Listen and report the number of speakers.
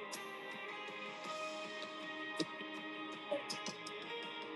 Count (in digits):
0